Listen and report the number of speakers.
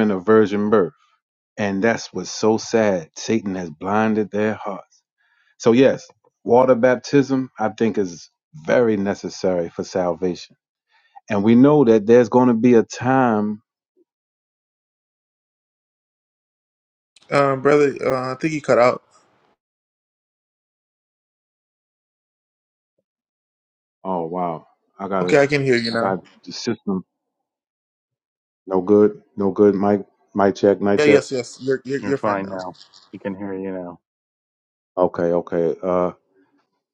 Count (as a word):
three